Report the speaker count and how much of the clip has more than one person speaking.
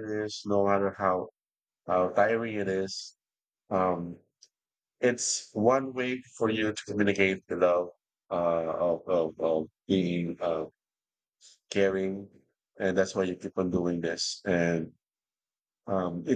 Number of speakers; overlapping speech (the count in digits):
1, no overlap